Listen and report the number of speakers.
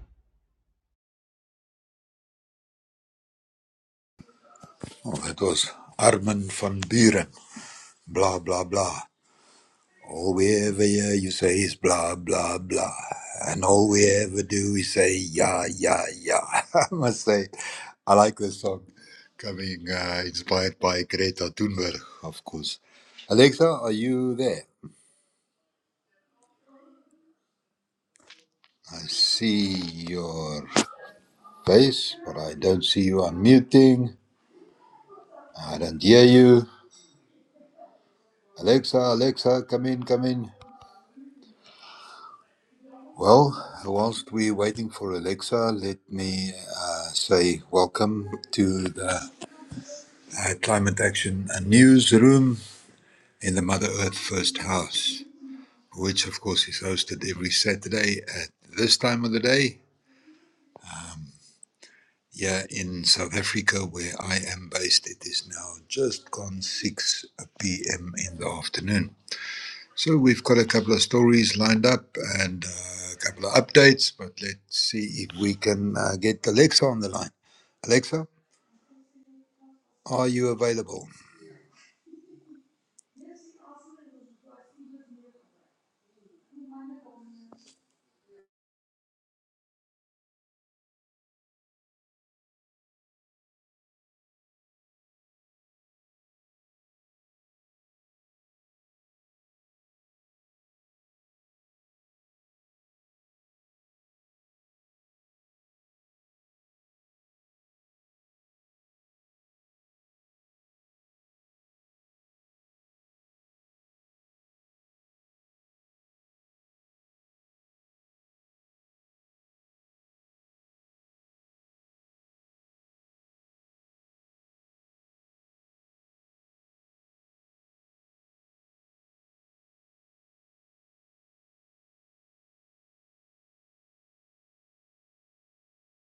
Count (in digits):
1